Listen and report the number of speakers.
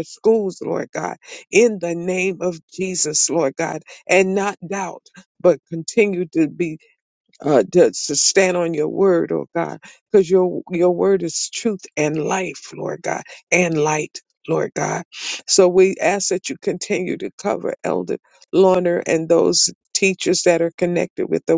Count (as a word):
one